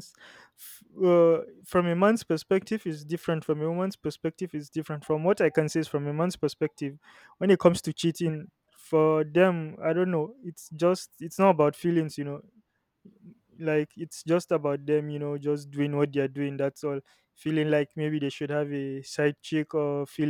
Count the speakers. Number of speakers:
1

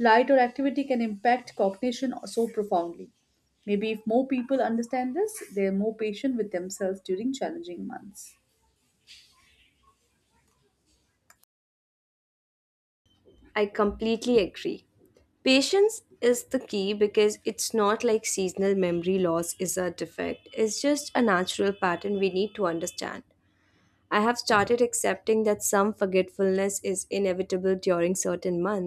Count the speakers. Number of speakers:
2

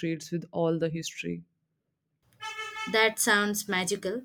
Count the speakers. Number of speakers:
2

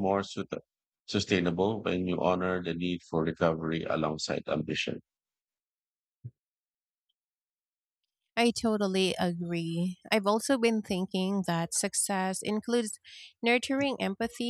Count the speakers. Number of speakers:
2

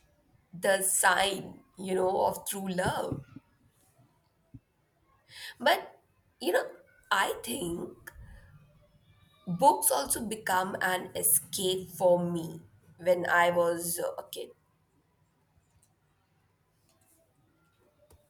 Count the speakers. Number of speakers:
1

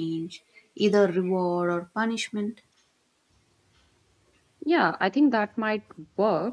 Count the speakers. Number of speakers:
2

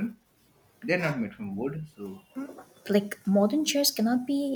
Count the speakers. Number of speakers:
2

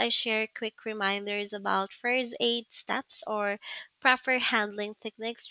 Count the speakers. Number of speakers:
1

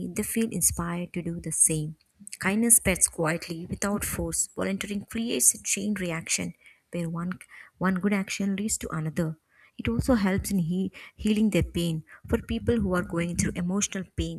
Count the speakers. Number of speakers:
1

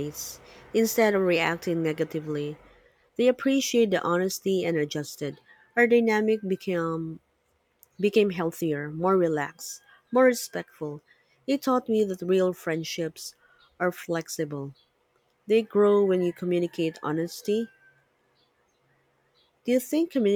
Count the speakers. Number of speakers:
1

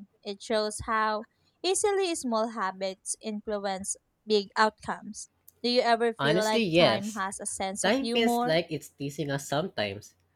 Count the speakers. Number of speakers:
2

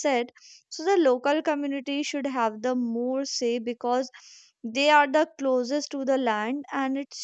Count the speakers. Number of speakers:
1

